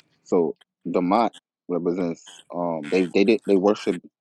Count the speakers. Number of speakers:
1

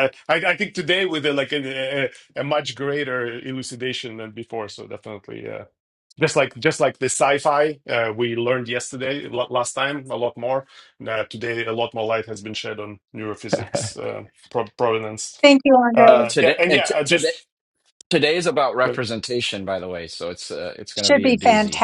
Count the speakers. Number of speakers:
3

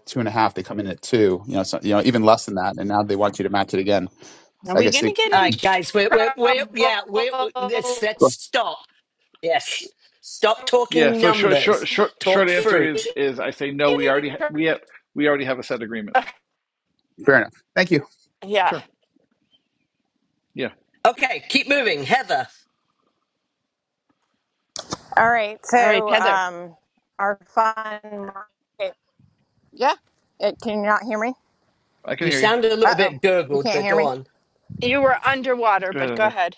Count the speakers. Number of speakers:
5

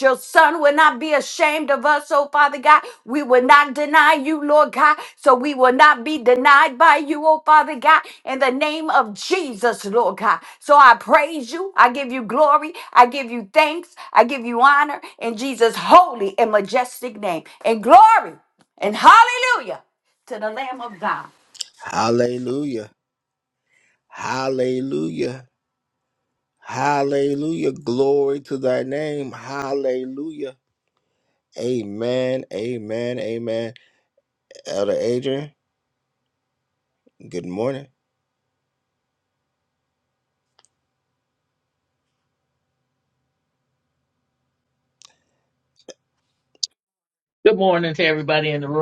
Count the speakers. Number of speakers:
3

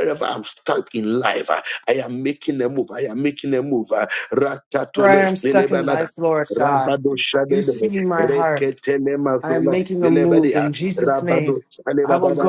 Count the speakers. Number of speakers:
2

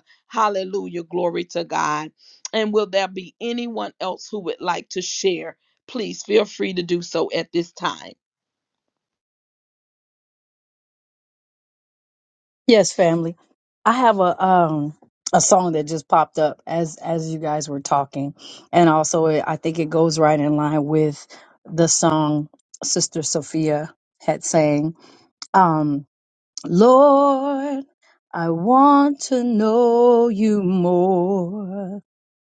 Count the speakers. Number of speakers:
2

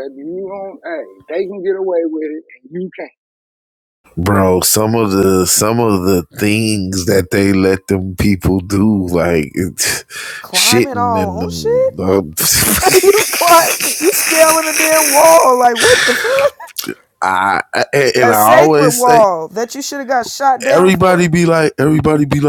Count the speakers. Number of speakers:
3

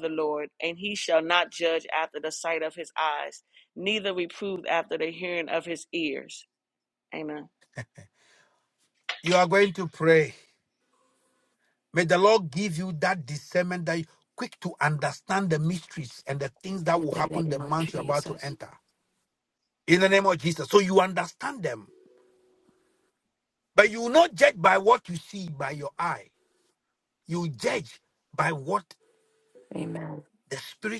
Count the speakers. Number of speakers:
3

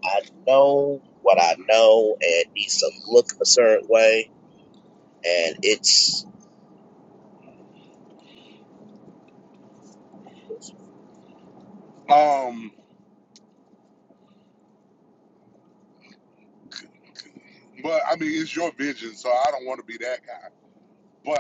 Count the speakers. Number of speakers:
2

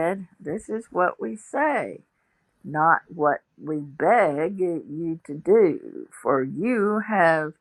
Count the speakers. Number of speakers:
1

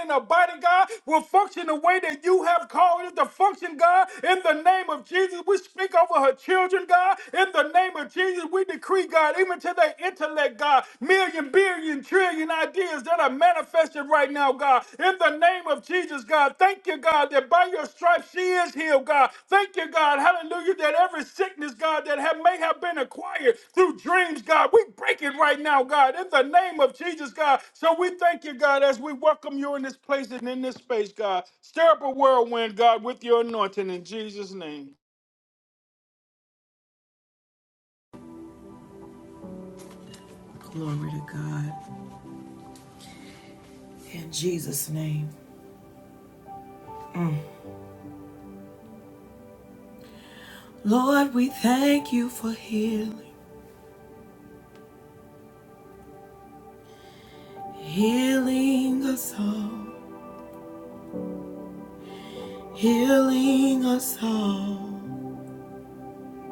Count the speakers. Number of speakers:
2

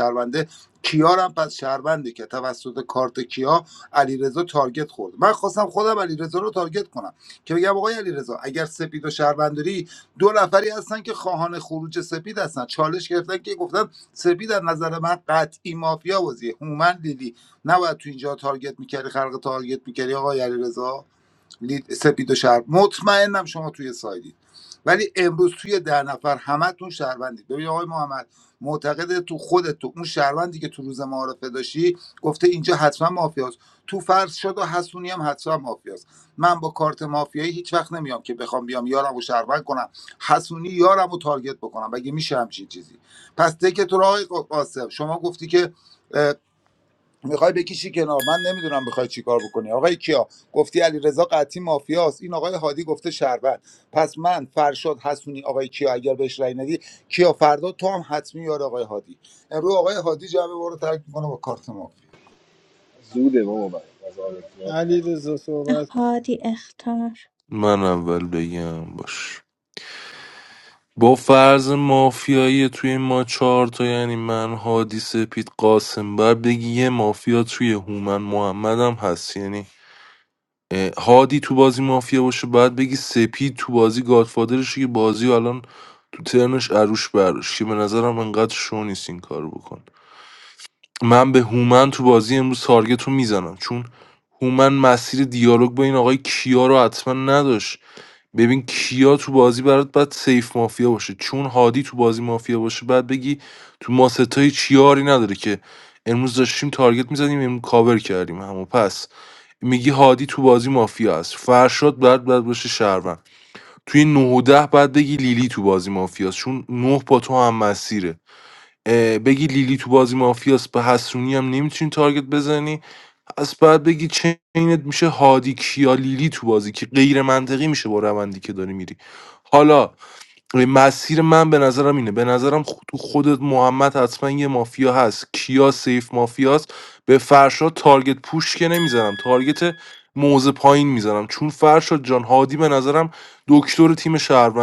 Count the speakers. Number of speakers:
5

